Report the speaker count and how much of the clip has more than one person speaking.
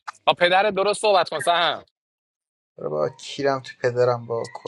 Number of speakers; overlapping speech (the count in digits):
2, no overlap